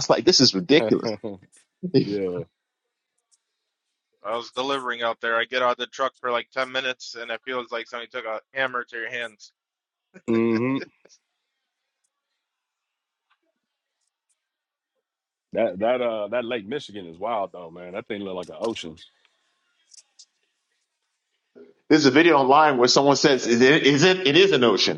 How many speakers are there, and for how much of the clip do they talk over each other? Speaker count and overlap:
3, no overlap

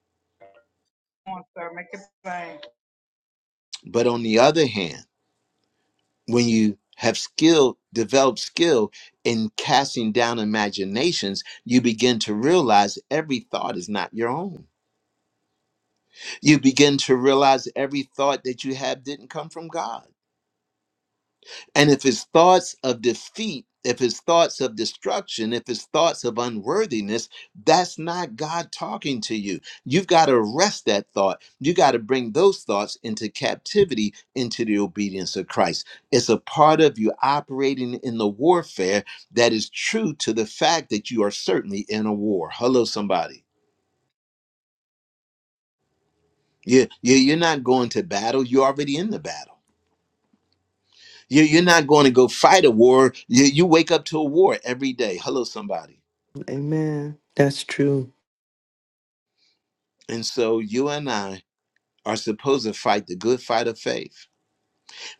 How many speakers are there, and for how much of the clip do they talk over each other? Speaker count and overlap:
3, no overlap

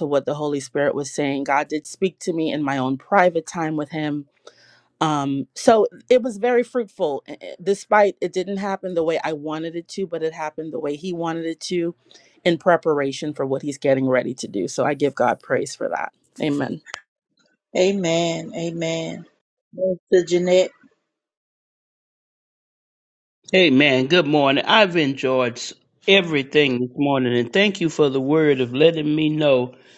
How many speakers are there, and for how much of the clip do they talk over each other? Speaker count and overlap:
3, no overlap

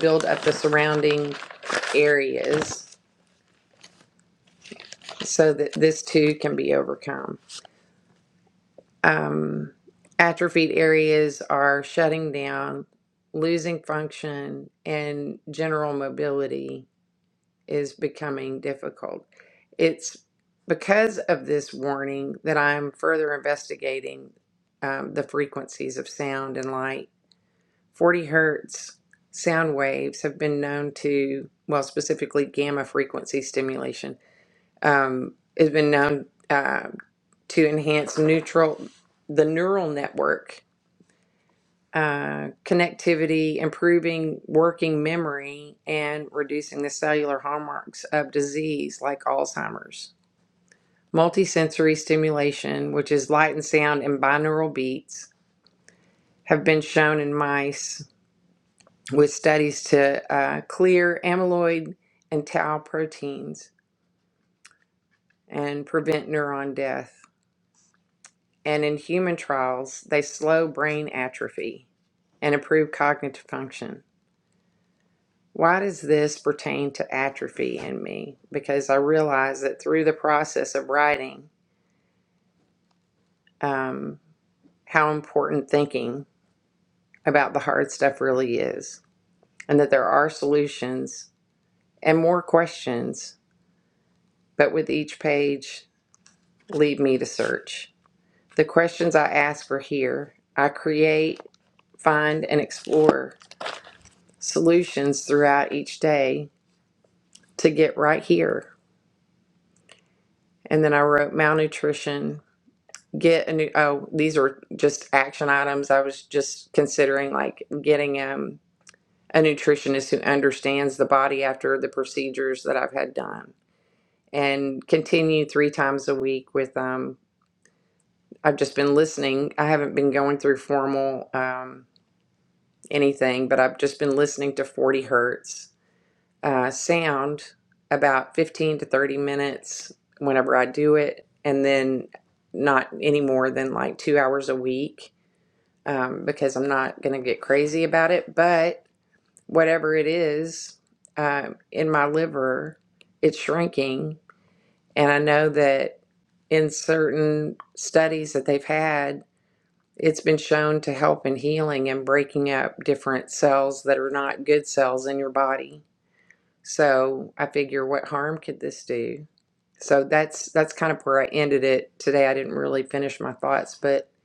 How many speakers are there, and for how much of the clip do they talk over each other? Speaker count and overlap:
1, no overlap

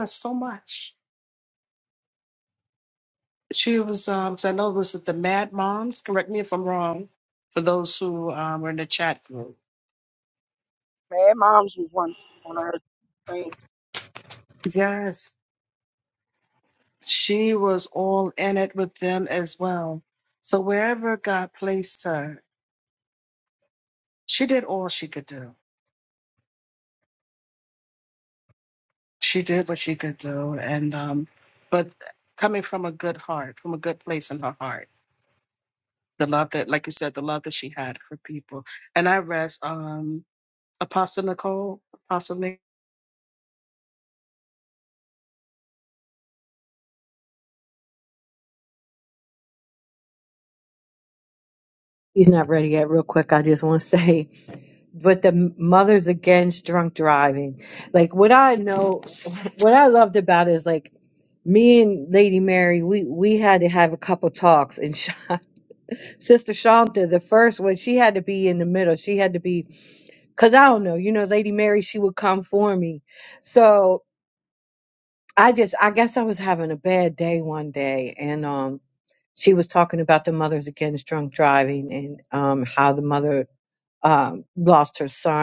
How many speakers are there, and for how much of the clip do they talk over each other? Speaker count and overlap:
3, no overlap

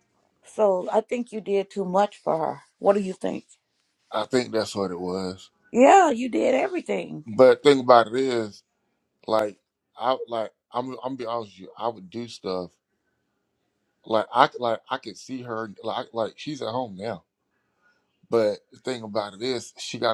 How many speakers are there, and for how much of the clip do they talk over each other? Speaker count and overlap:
2, no overlap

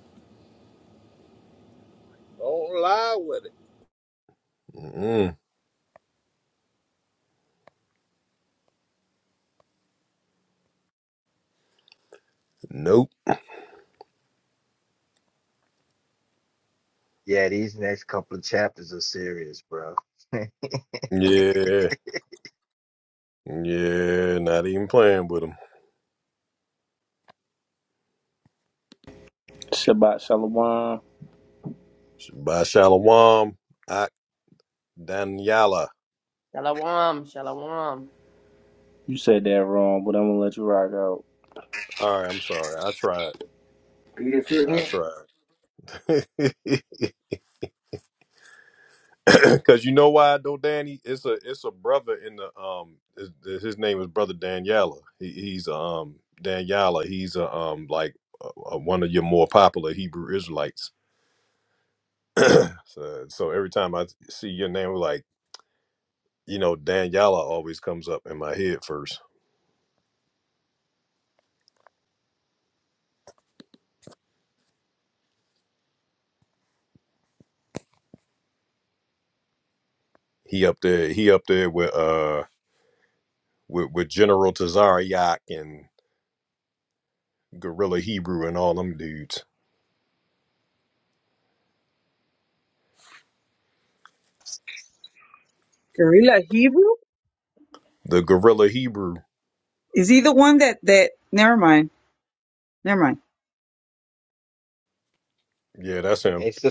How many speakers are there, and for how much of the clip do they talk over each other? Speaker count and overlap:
6, under 1%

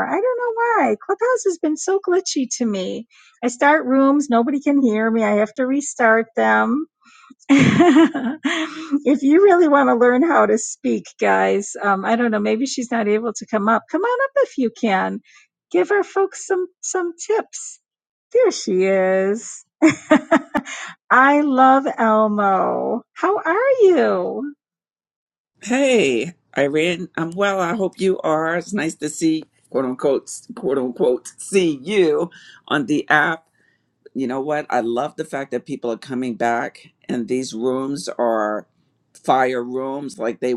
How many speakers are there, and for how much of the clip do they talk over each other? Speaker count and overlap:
2, no overlap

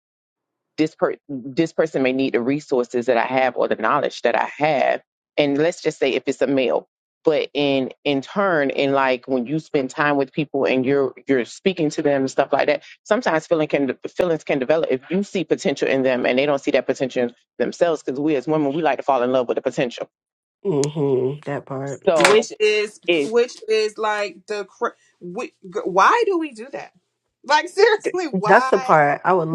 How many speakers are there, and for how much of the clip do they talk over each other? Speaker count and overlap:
3, about 3%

